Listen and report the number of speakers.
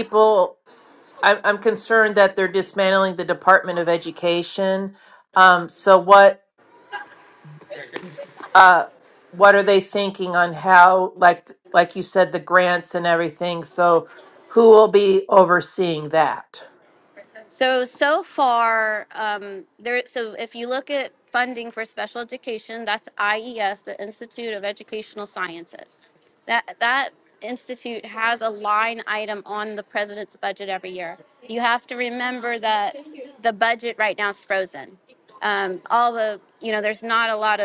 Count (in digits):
2